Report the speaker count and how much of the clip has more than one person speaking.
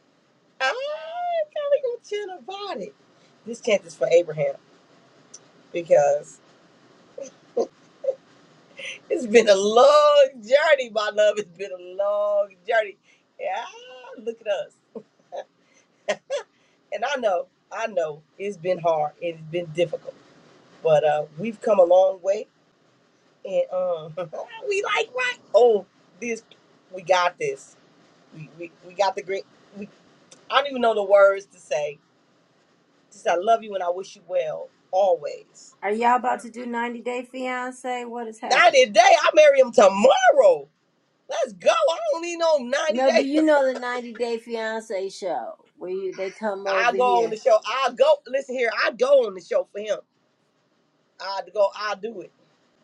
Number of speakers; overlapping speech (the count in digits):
2, about 3%